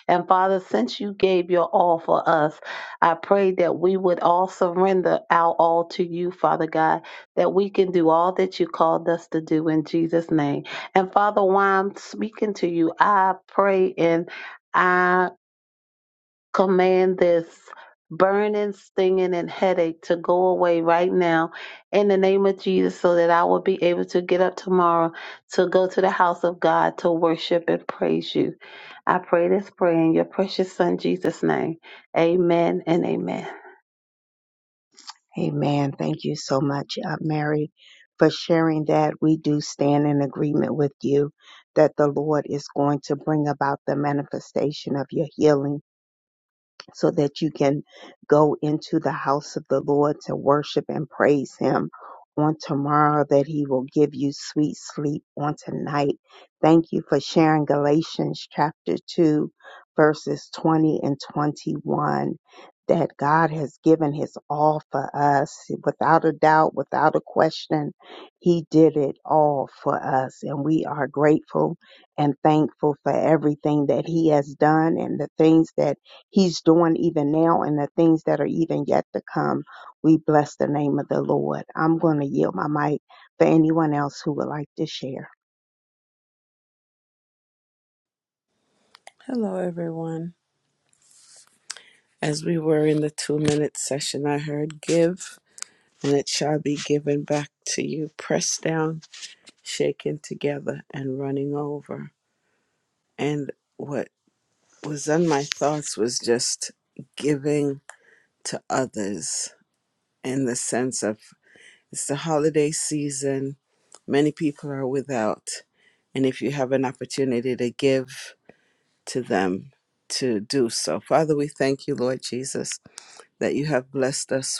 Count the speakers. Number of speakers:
three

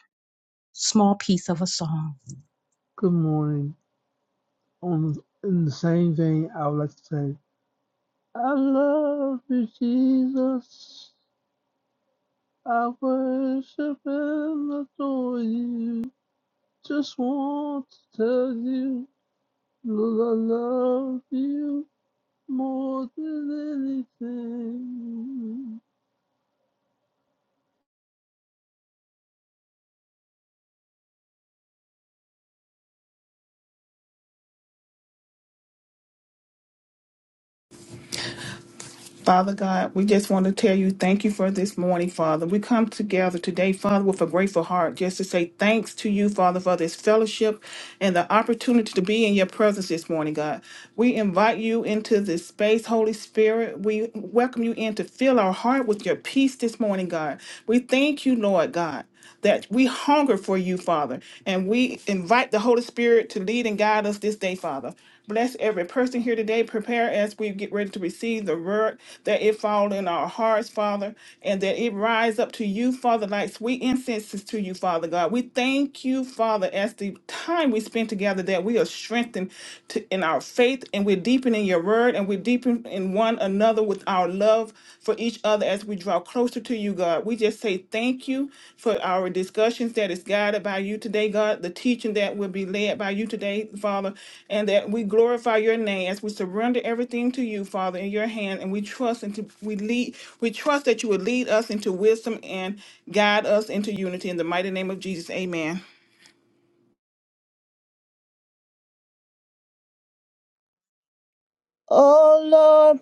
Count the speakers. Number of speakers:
four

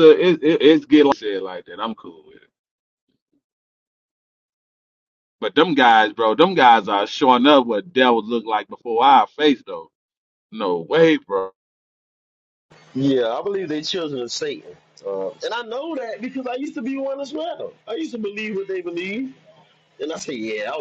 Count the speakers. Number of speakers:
two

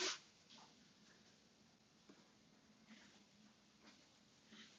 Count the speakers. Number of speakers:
zero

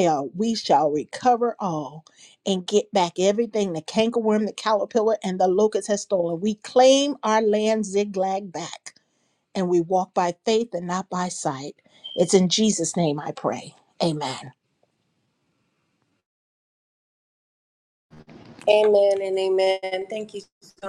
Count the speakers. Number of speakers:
two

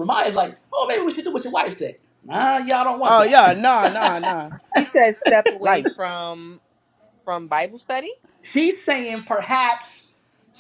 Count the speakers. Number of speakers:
three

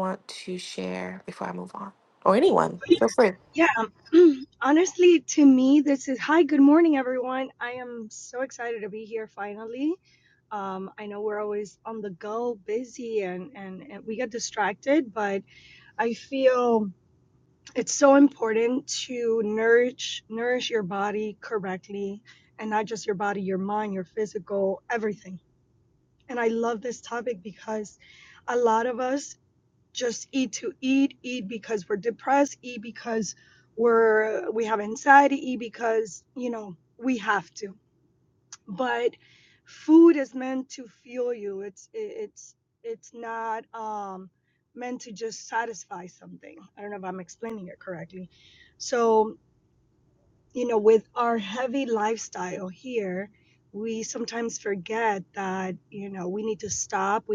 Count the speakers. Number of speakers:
two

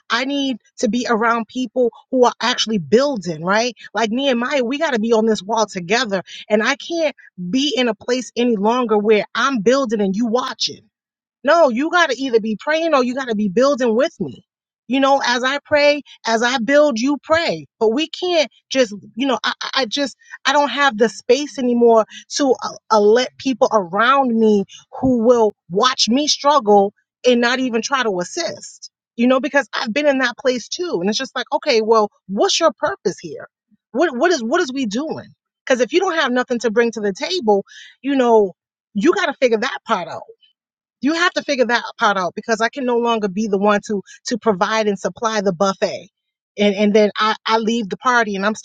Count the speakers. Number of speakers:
one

